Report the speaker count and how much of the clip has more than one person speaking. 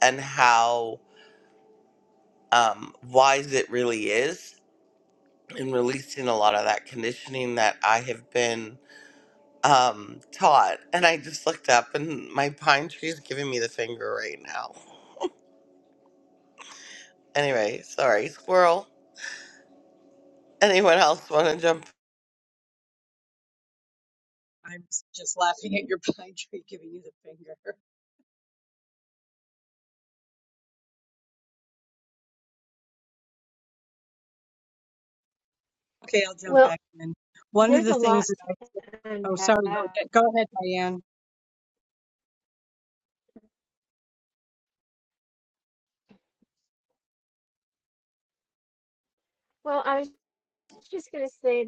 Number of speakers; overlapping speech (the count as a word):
three, about 2%